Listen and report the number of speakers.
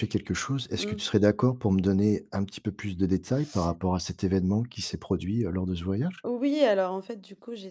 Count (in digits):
2